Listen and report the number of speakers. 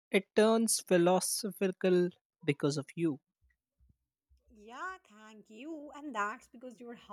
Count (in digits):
2